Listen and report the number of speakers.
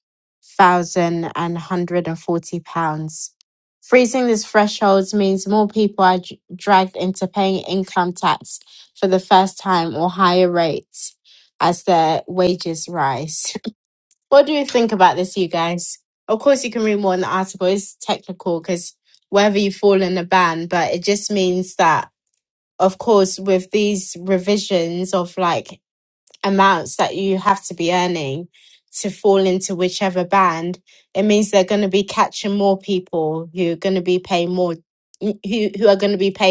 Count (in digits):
1